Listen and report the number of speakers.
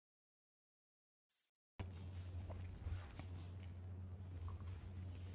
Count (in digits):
0